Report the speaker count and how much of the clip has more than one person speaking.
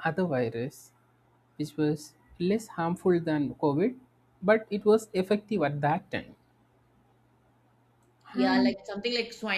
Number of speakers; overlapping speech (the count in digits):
2, about 4%